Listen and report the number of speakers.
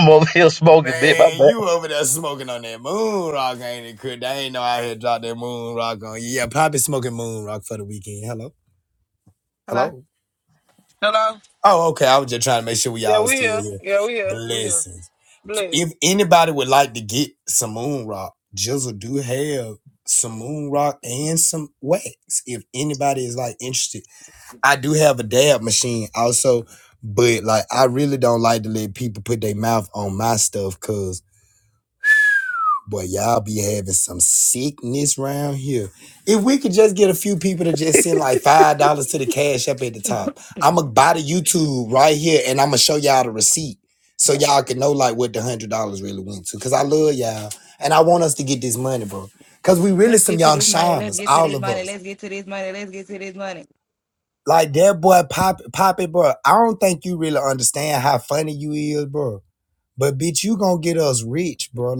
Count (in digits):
4